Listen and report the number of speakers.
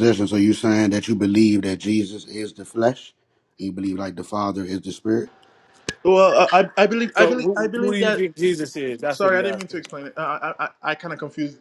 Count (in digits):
3